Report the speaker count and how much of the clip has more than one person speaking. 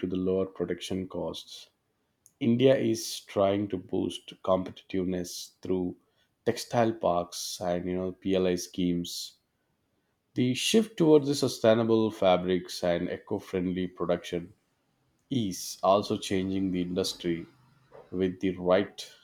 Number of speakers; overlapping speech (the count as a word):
one, no overlap